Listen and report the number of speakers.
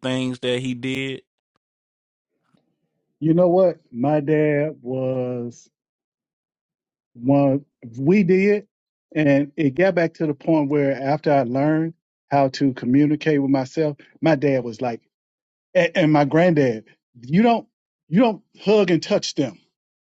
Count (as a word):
two